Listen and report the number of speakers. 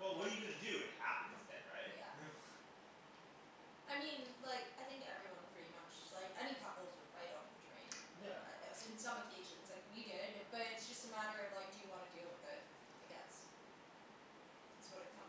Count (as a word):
two